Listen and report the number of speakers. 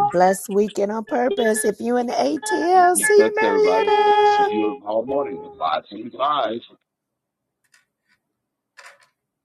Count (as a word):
two